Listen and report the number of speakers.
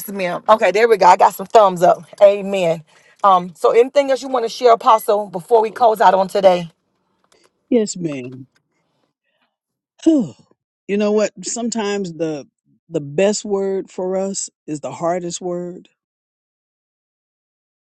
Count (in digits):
2